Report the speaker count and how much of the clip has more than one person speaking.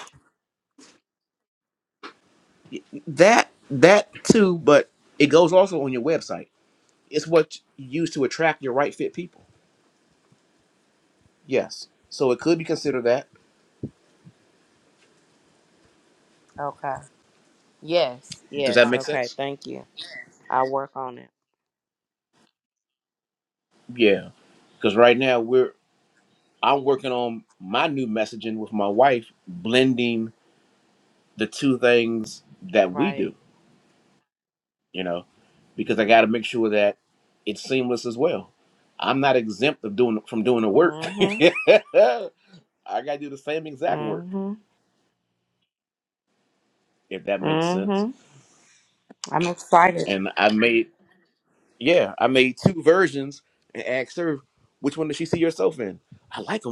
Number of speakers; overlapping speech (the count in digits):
2, about 4%